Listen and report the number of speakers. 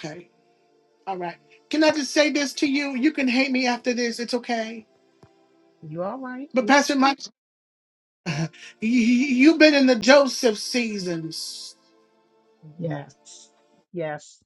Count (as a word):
two